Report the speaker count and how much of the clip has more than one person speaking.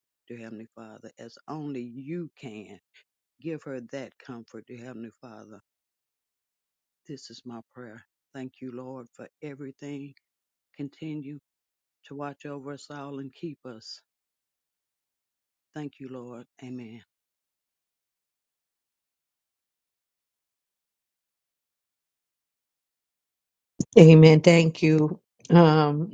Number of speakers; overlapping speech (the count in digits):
2, no overlap